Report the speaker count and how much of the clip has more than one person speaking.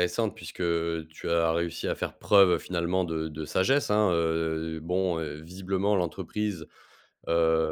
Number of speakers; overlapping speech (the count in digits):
1, no overlap